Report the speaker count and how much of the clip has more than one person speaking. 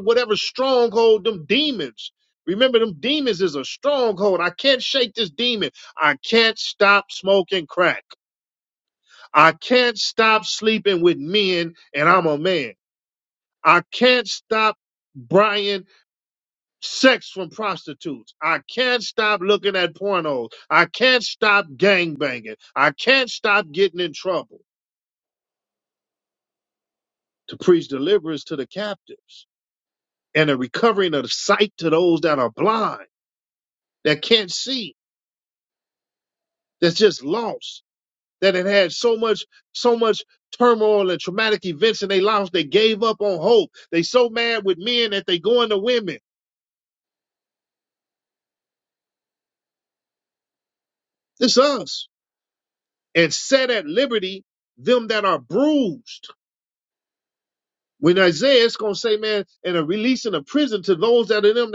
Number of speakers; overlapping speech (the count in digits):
1, no overlap